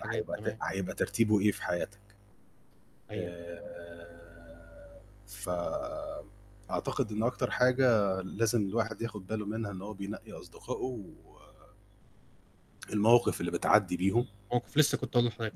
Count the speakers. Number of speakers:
two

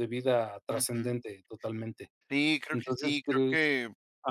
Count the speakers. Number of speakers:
two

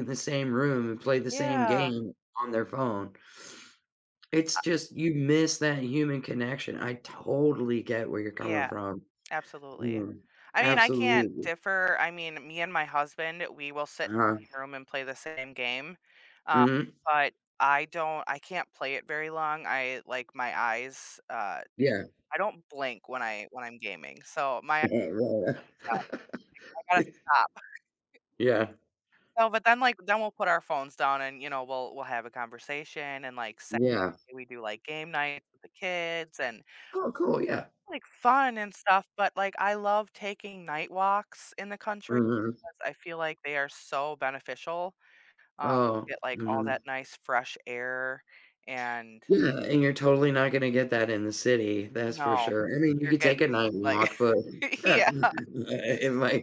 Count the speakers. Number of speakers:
two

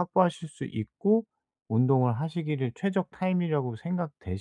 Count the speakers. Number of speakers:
one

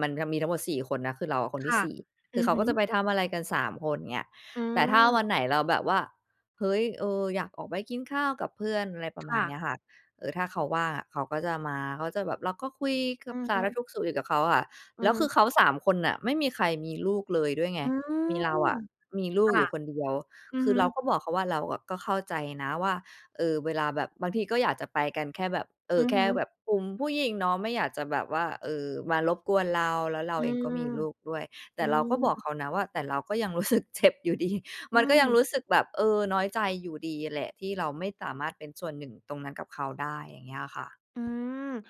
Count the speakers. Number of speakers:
two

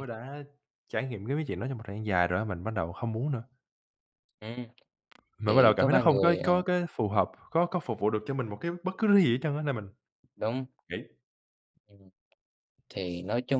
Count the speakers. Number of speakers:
two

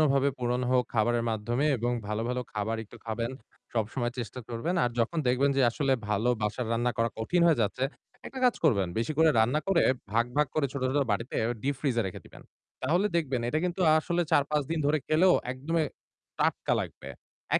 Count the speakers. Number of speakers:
one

